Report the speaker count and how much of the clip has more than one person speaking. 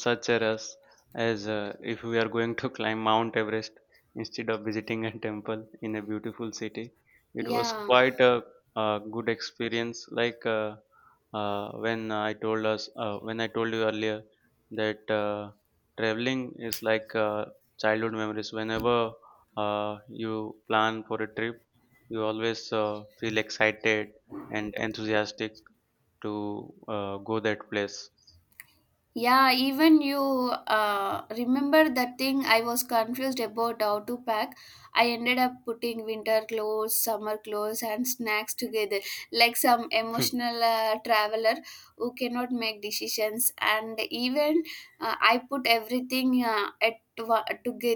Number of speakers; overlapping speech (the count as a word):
two, about 1%